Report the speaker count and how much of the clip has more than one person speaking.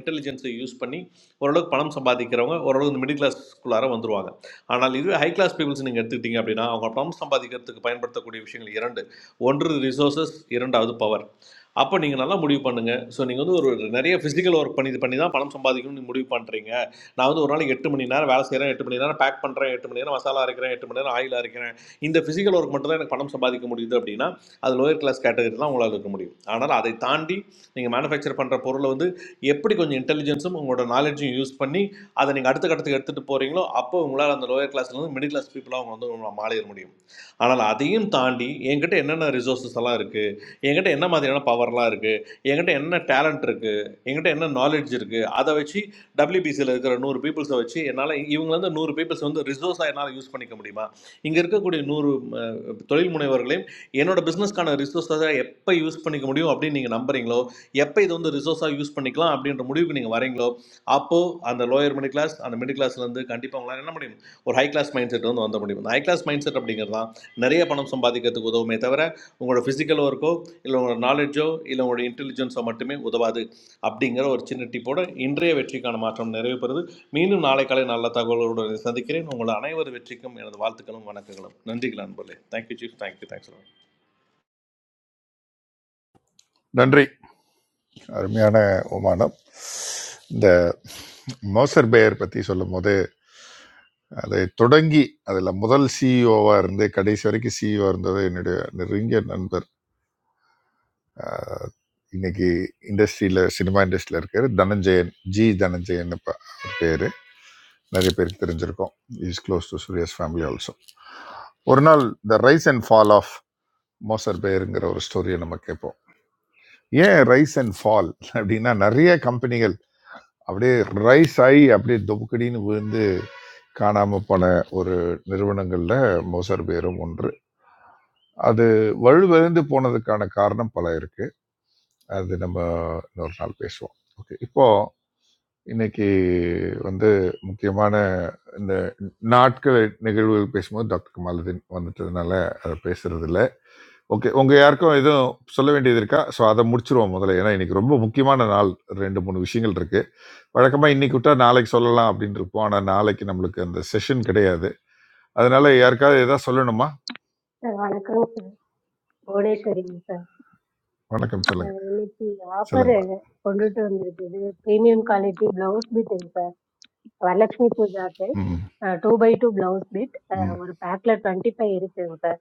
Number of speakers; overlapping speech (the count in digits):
3, under 1%